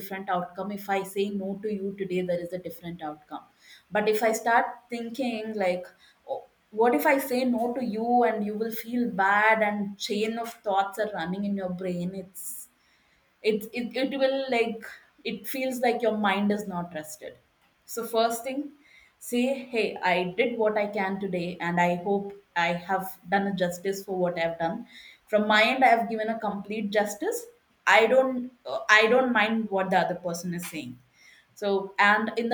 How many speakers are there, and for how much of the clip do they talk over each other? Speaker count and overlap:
one, no overlap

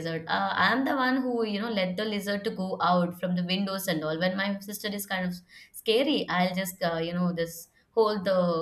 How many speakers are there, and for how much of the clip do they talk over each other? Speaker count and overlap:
one, no overlap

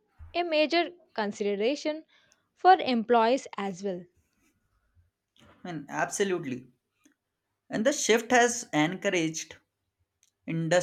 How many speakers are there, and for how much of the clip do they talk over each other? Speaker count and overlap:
two, no overlap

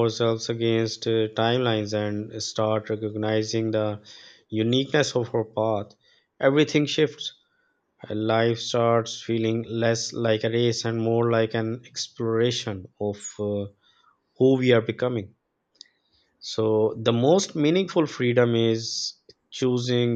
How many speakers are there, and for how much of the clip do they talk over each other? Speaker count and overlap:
one, no overlap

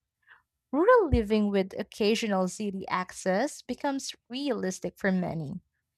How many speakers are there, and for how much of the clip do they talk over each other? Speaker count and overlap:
one, no overlap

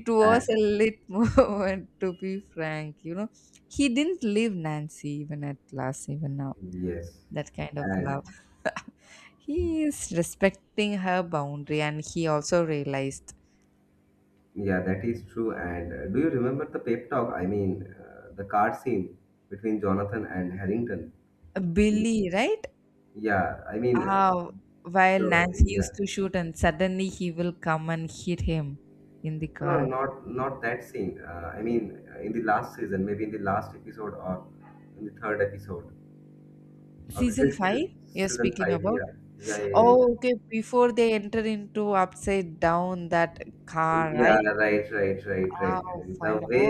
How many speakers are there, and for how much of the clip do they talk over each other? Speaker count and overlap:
two, about 12%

